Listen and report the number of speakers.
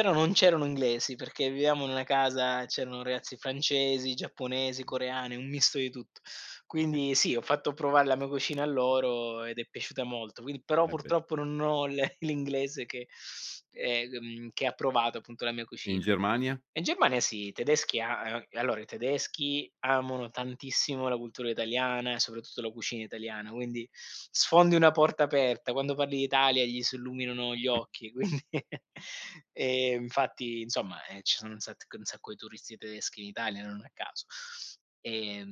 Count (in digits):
2